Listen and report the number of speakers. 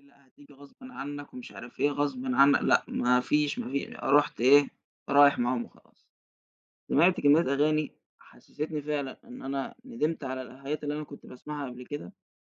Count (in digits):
1